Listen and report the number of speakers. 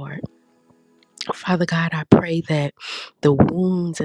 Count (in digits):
1